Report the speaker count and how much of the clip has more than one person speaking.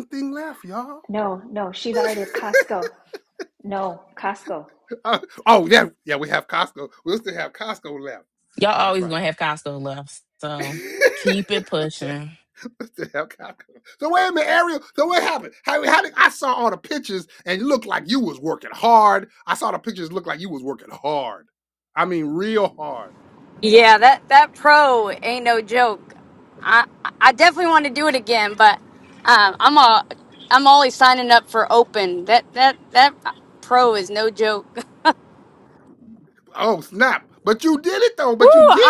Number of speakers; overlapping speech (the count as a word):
four, about 4%